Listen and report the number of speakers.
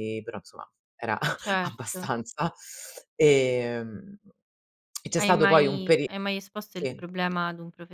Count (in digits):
2